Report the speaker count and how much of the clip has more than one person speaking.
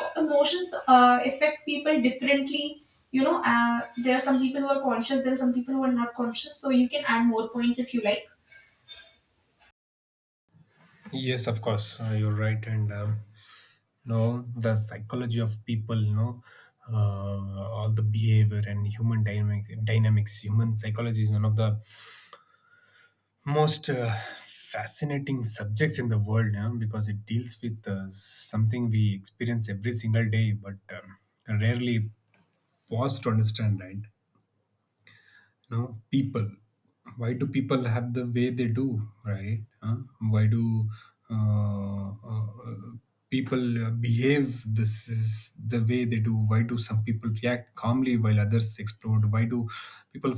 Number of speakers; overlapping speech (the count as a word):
two, no overlap